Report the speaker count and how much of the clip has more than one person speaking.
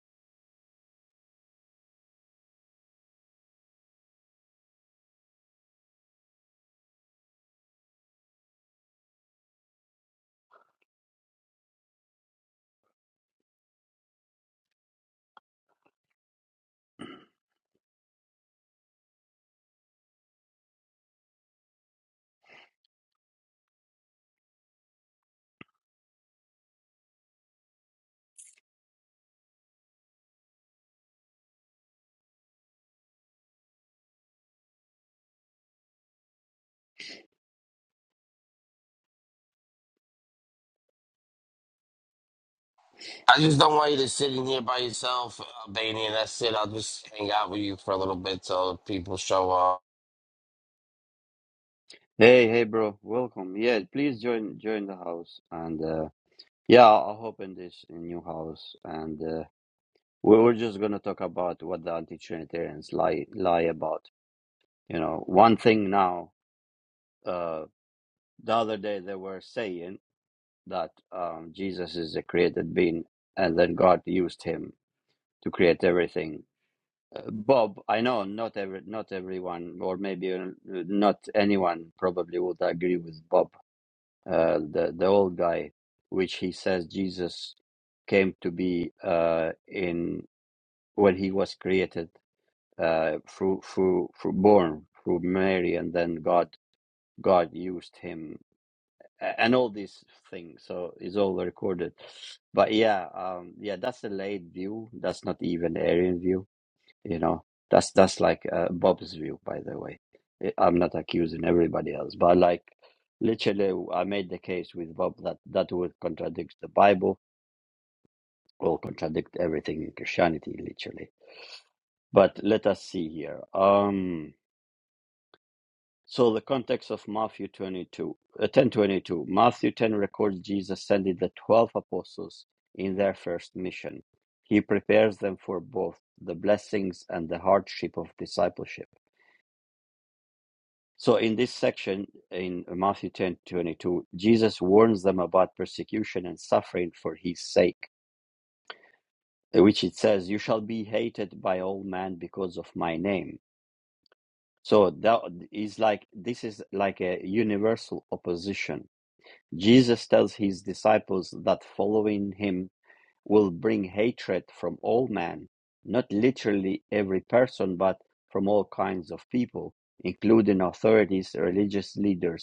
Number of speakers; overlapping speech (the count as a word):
two, no overlap